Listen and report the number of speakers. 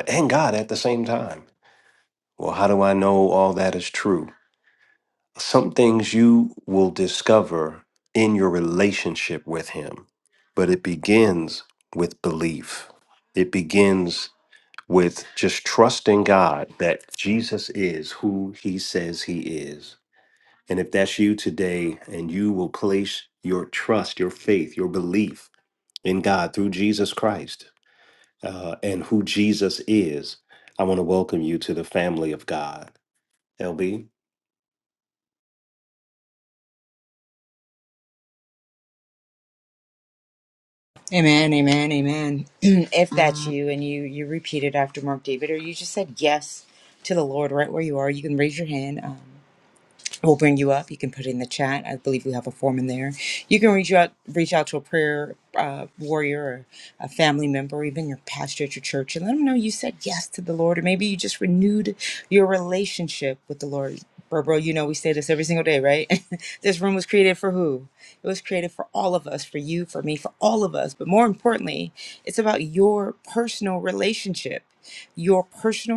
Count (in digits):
2